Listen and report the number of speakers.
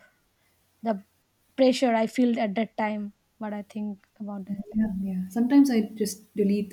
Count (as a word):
two